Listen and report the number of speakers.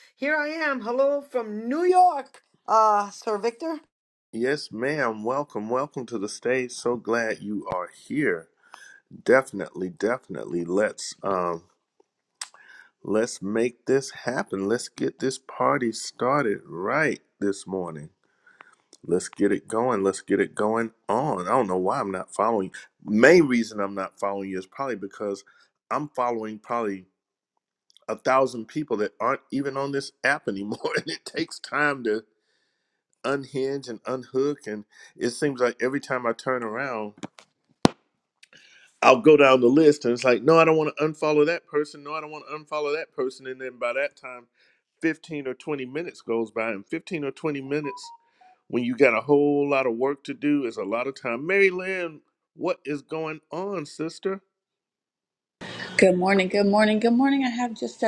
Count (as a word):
three